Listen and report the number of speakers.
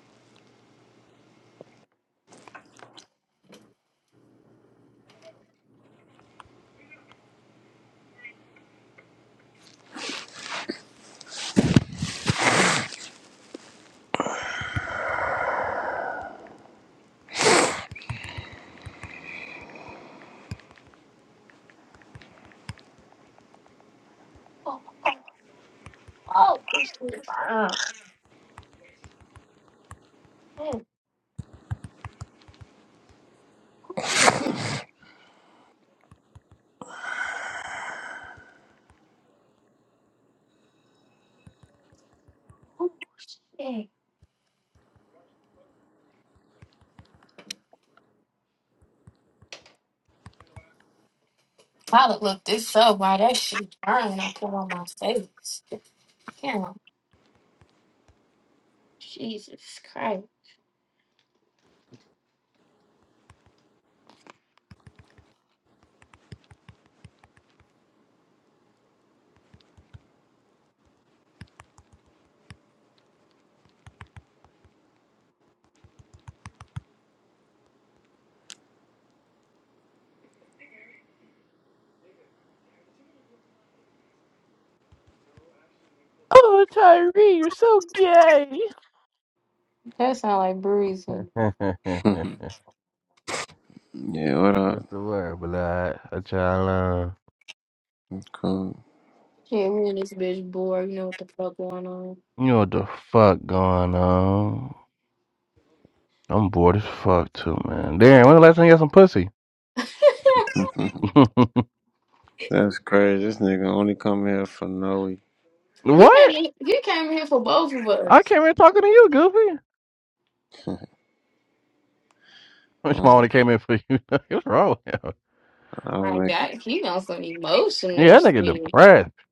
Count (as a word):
three